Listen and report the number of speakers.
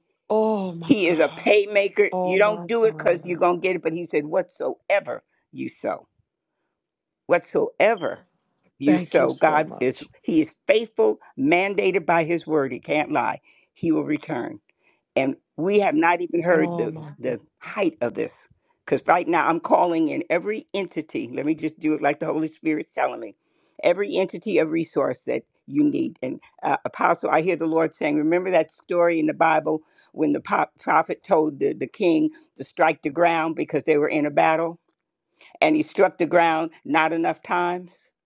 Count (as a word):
two